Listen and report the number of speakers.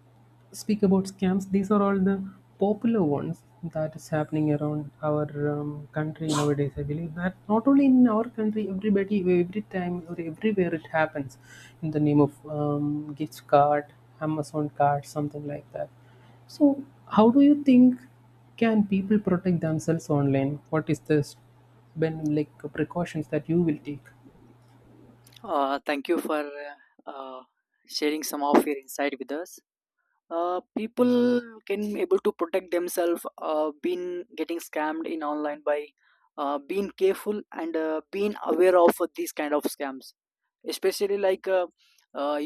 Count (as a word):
two